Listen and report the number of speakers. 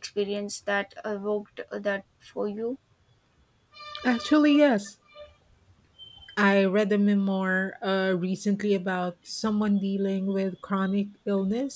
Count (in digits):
2